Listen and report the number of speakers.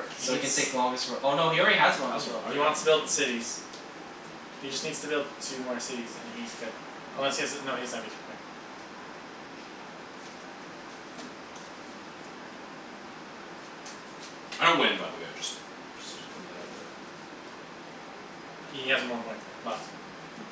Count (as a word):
three